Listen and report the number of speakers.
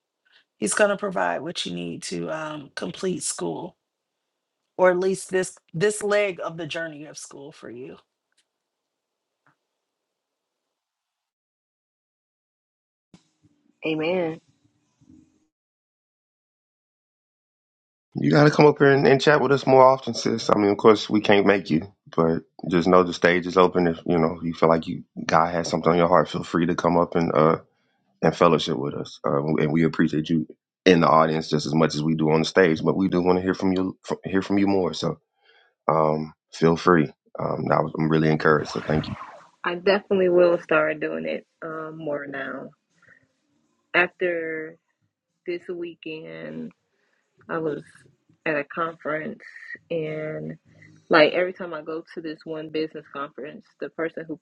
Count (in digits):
3